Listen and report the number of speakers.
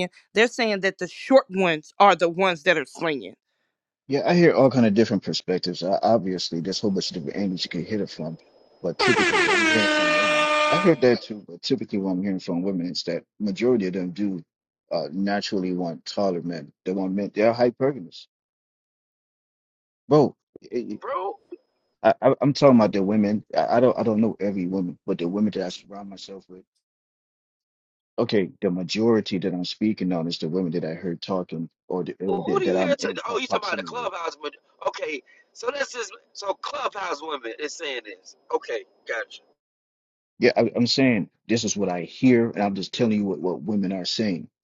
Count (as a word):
three